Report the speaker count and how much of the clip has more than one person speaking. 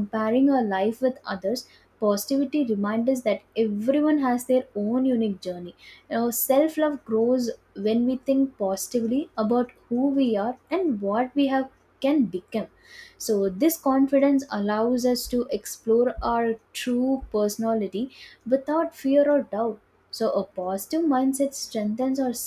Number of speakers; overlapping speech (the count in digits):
1, no overlap